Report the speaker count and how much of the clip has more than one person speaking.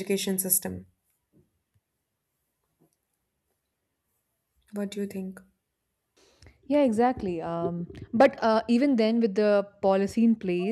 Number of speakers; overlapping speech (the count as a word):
two, no overlap